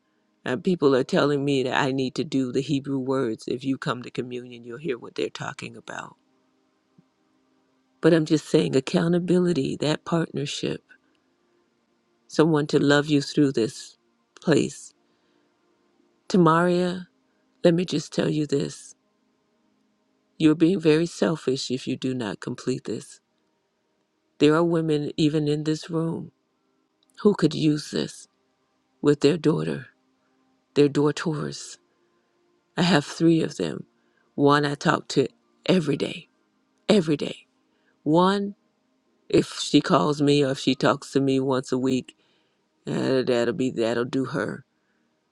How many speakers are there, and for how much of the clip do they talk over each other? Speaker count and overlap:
one, no overlap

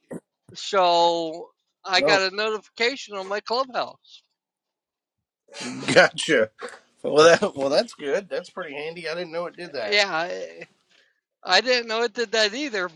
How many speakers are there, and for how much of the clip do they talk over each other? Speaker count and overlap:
two, about 3%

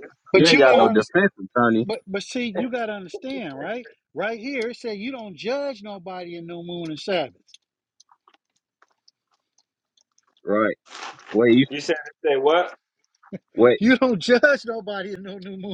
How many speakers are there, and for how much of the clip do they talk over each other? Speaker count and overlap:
three, about 4%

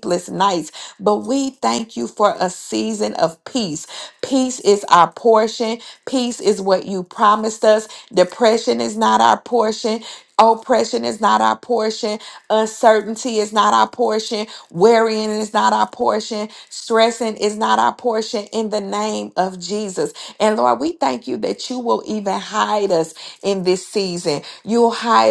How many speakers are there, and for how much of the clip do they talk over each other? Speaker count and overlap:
one, no overlap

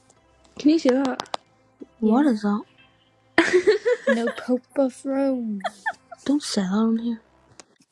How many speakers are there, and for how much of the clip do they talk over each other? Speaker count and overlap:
three, about 4%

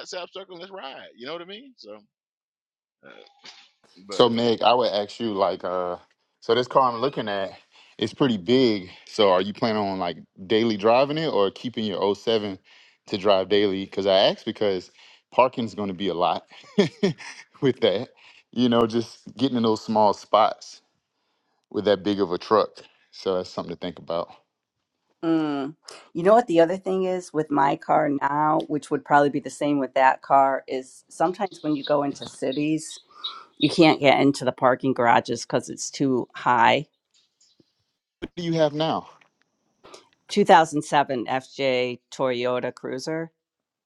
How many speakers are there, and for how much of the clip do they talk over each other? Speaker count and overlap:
three, under 1%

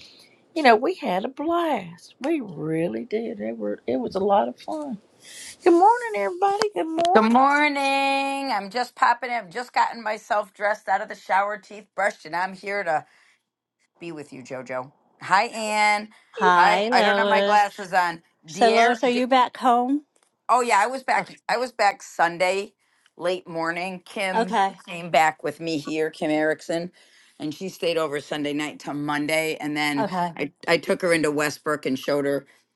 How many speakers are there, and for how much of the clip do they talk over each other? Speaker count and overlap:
three, about 6%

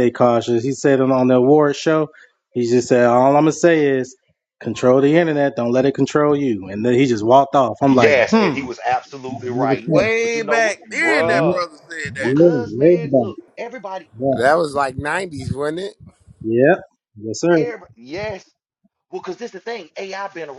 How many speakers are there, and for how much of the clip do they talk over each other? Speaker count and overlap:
four, about 21%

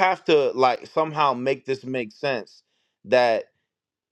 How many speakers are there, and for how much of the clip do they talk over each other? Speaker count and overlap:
one, no overlap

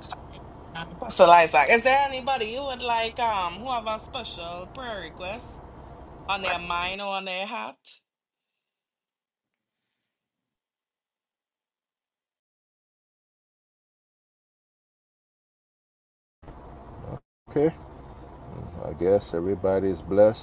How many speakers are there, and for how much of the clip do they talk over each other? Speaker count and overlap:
two, no overlap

